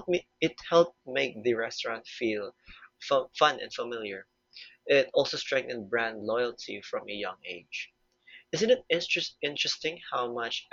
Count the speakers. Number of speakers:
one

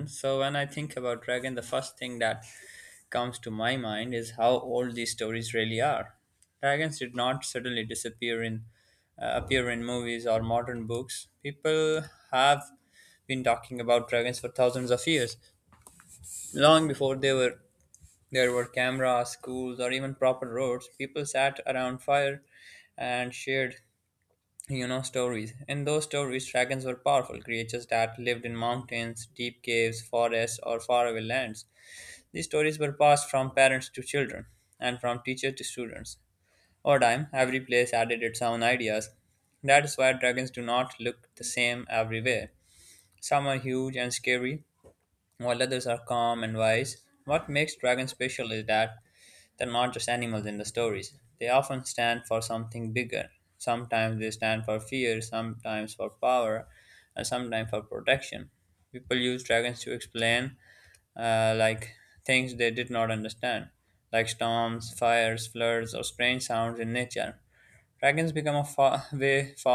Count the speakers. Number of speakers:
one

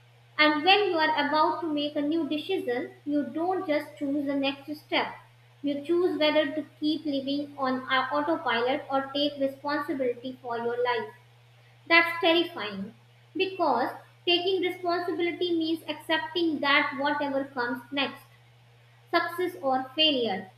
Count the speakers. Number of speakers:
one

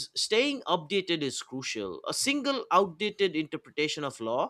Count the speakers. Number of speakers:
one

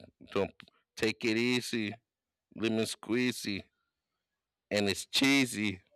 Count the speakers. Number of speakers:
one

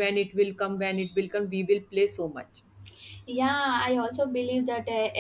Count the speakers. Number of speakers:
two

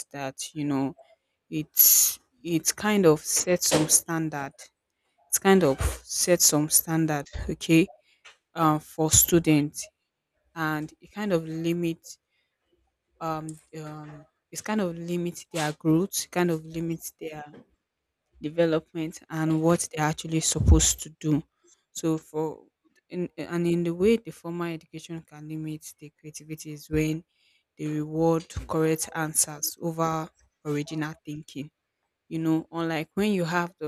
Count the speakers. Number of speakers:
one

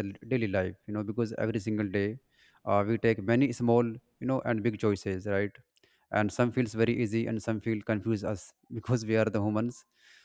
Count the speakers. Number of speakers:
one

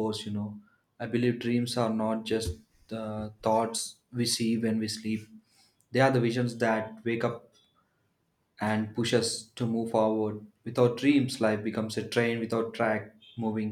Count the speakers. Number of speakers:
one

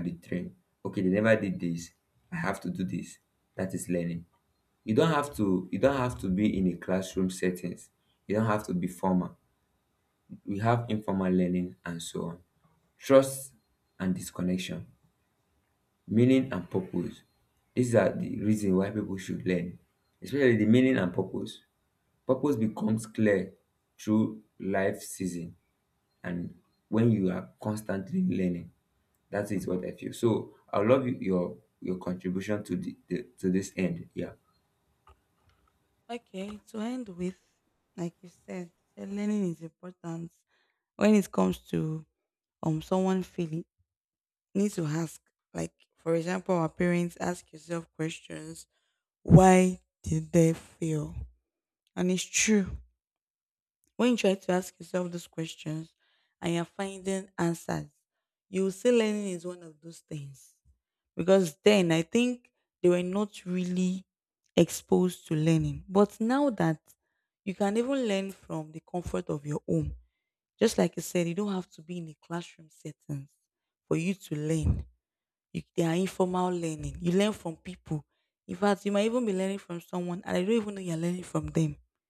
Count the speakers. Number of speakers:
two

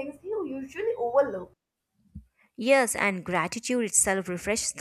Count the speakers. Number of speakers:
two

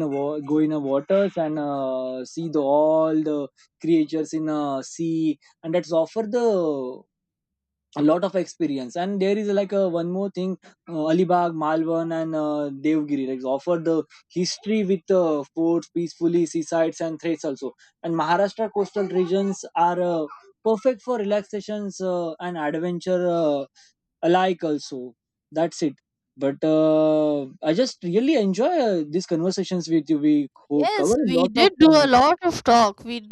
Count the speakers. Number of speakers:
two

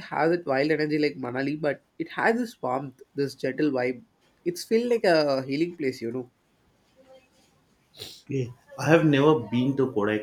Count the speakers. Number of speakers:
two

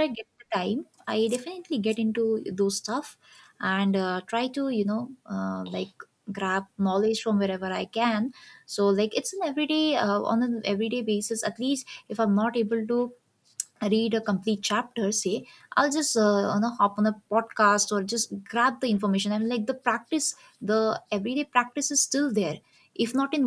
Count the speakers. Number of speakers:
one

